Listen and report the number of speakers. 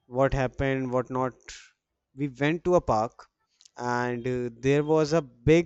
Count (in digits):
1